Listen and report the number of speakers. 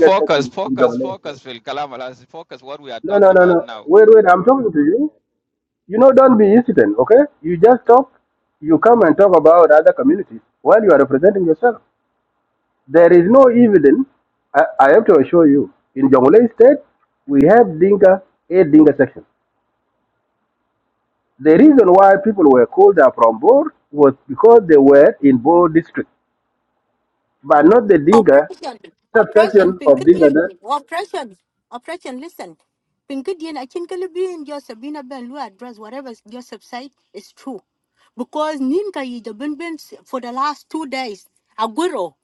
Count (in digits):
3